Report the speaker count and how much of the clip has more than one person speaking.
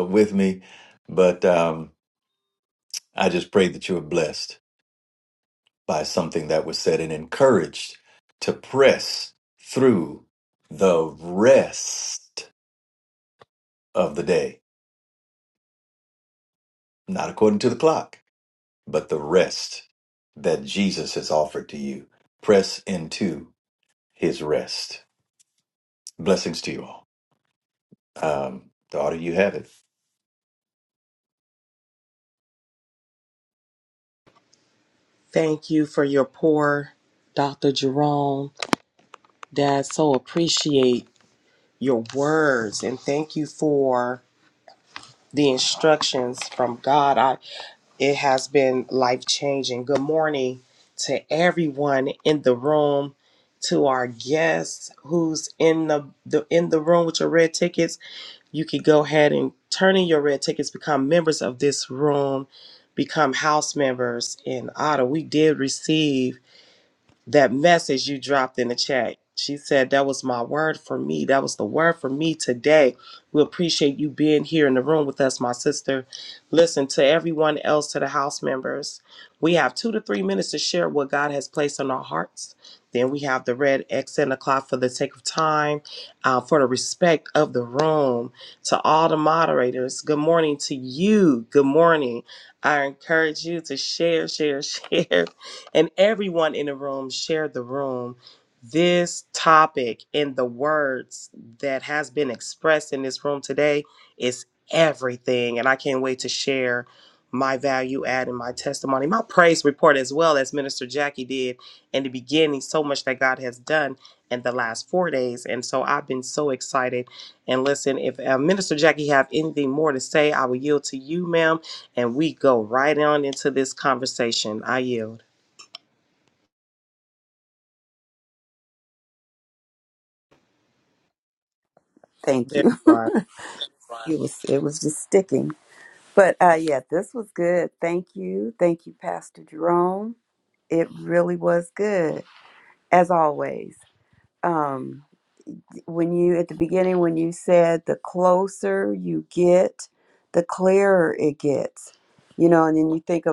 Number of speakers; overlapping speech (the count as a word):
three, under 1%